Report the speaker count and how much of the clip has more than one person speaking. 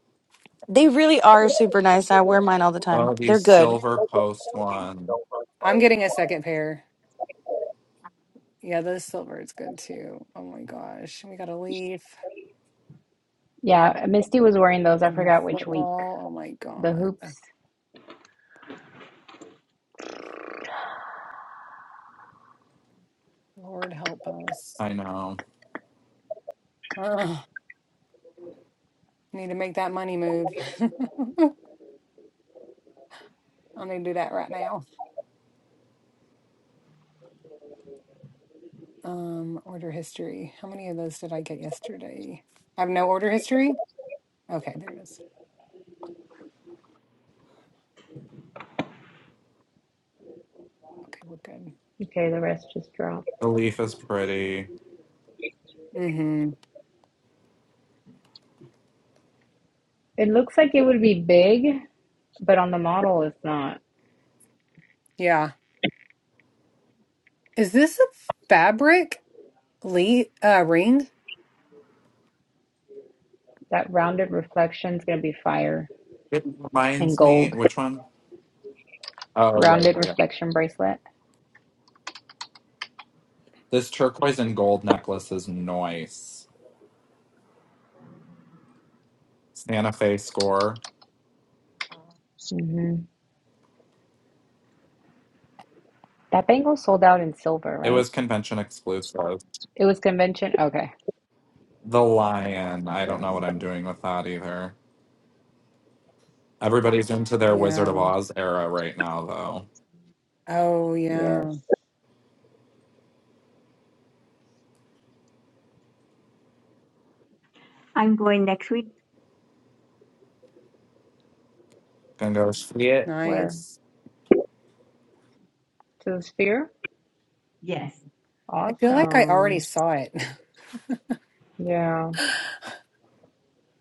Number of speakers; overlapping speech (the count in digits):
5, about 5%